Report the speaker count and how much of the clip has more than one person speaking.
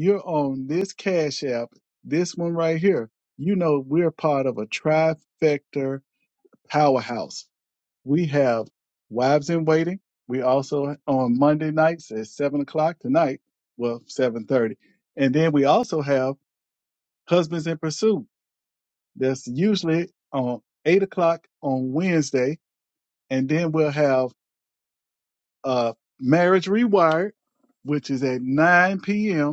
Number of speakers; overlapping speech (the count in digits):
1, no overlap